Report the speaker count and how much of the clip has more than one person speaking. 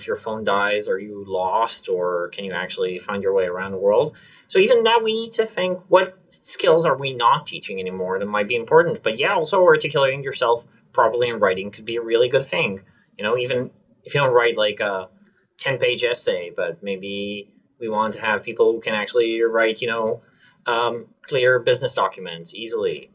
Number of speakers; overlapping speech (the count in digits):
1, no overlap